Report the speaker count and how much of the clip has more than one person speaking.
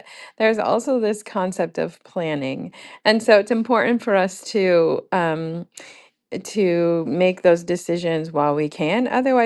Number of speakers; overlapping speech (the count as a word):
one, no overlap